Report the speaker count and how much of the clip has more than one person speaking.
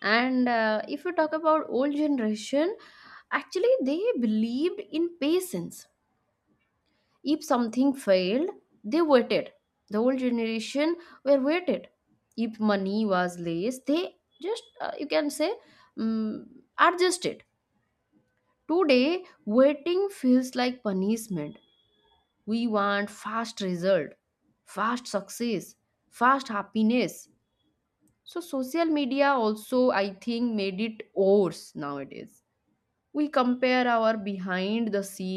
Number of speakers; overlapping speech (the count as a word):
one, no overlap